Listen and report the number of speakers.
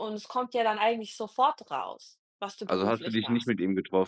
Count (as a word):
two